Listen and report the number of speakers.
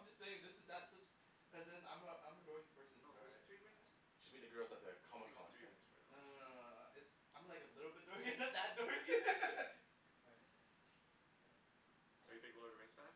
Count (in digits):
3